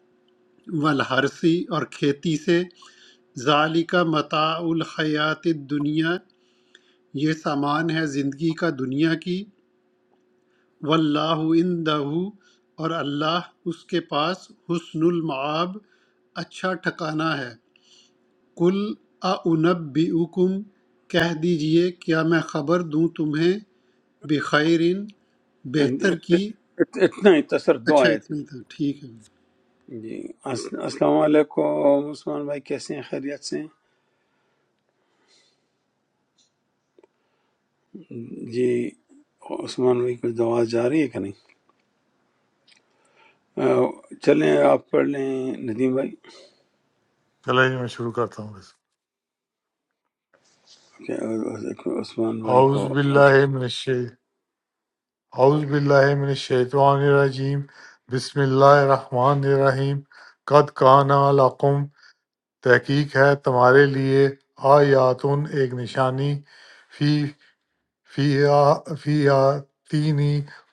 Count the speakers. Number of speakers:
3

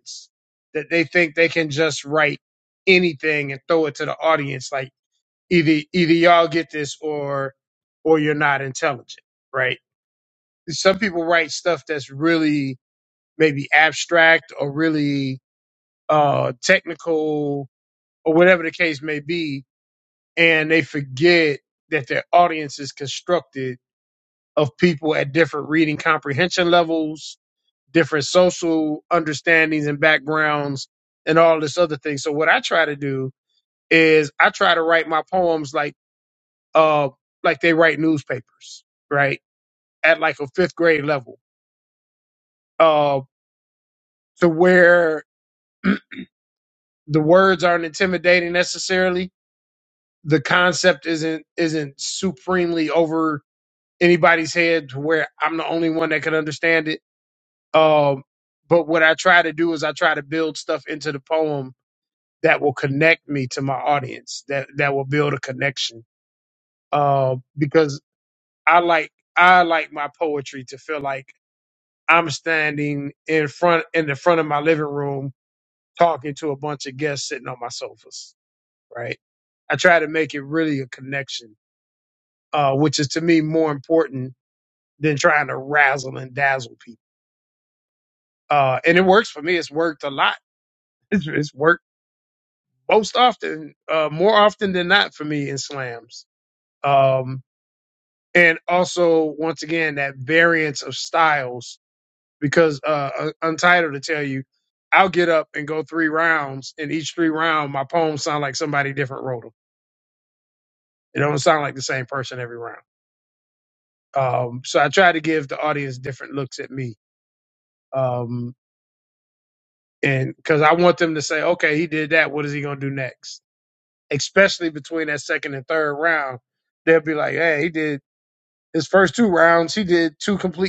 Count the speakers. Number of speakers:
1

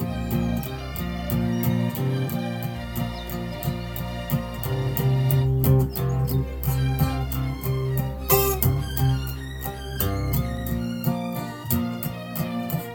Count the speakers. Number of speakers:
0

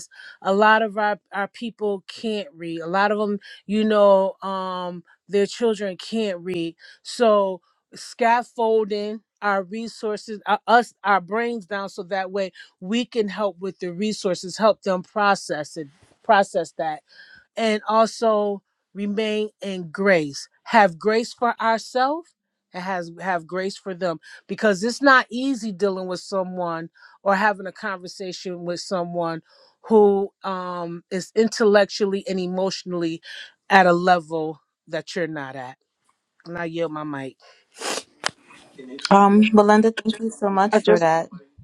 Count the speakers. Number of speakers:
2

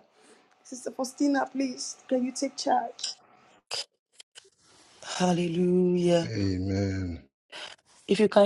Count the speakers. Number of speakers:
3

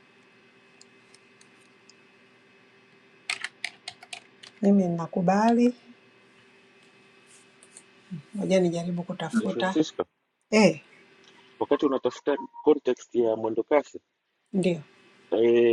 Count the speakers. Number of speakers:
2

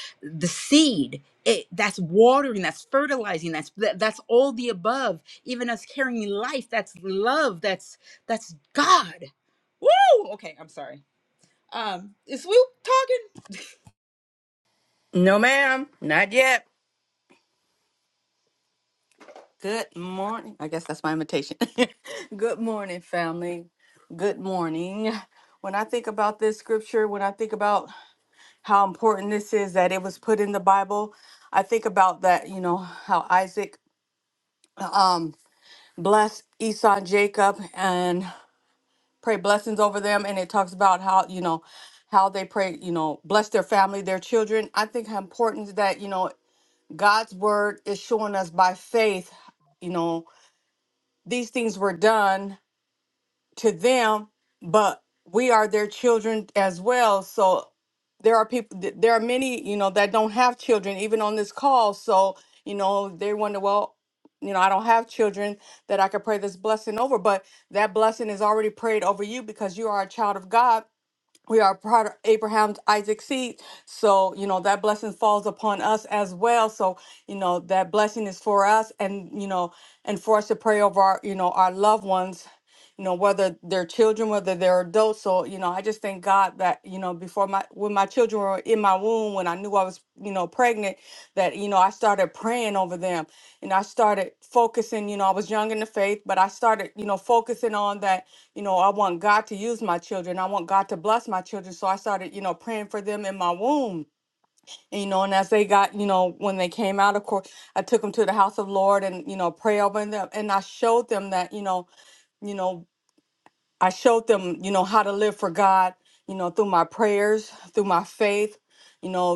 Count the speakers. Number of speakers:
2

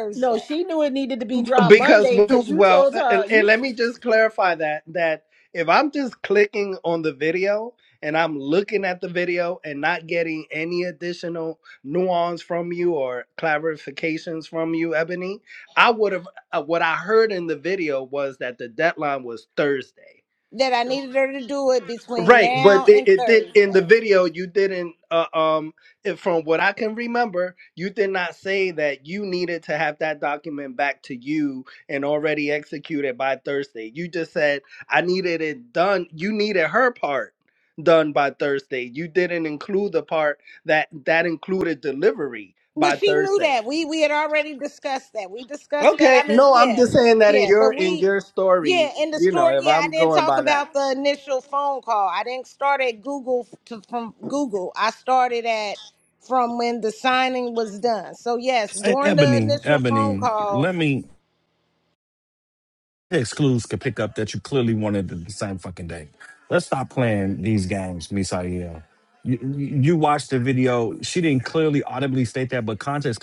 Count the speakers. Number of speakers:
4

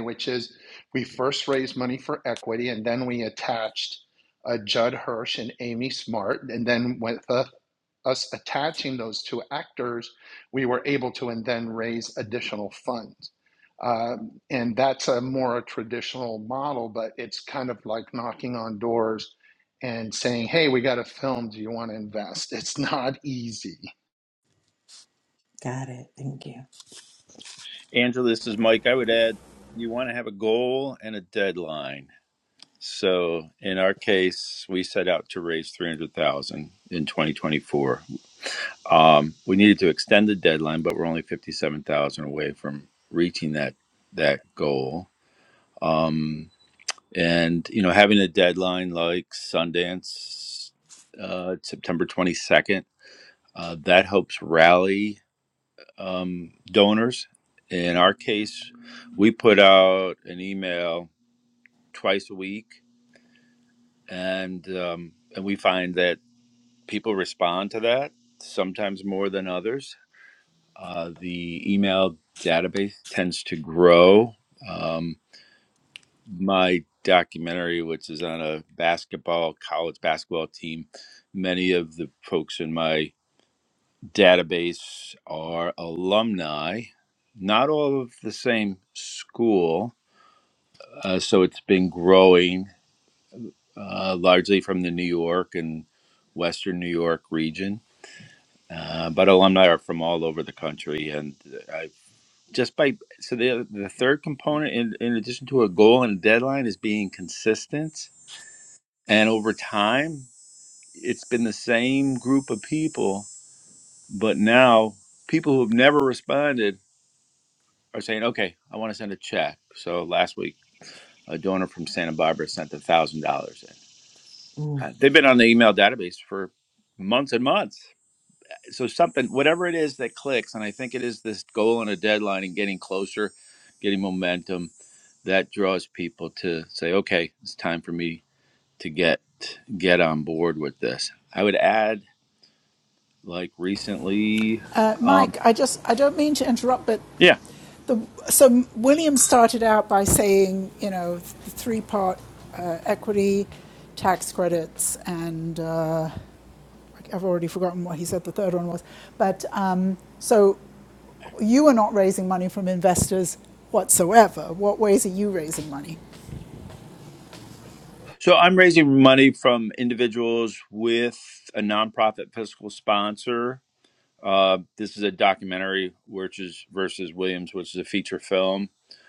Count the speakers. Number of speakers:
4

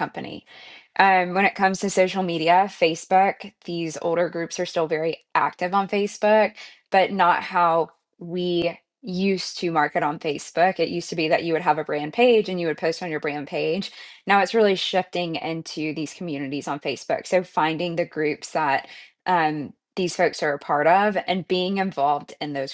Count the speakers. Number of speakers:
1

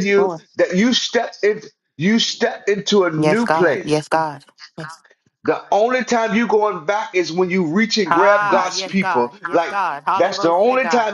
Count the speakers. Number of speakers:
2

